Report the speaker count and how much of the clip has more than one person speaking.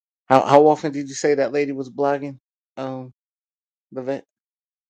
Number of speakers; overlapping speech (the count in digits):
1, no overlap